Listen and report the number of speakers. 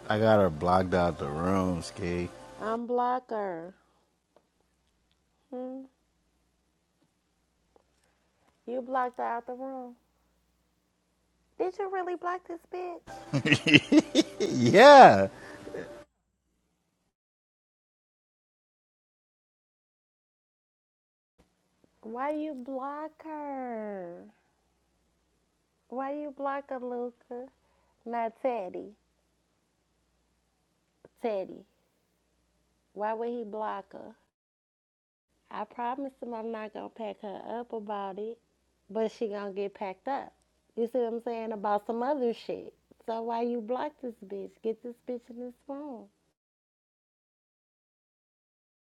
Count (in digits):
2